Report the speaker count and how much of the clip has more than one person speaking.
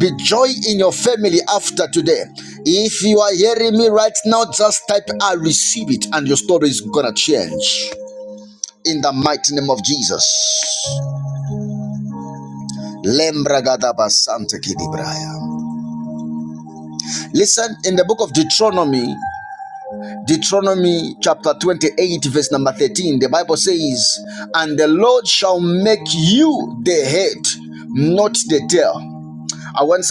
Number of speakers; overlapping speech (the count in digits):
1, no overlap